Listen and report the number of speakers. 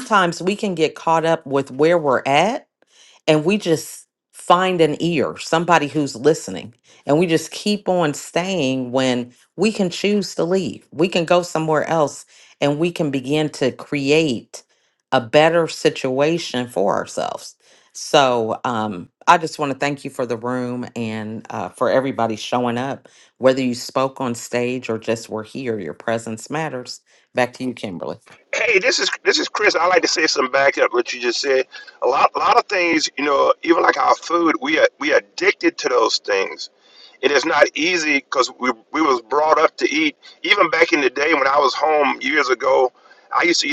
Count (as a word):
two